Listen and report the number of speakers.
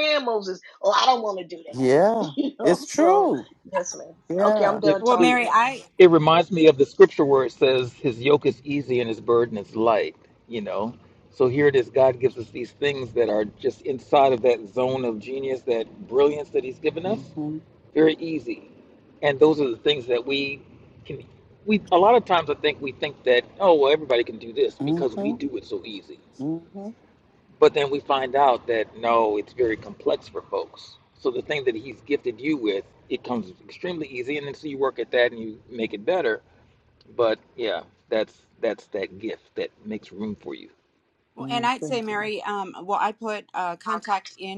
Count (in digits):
4